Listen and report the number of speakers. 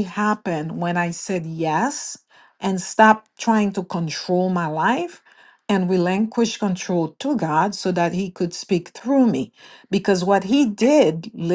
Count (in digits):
1